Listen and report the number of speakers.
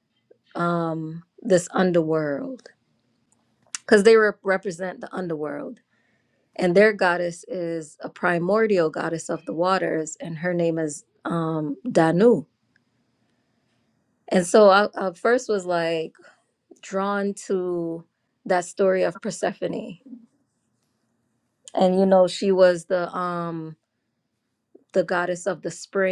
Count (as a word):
one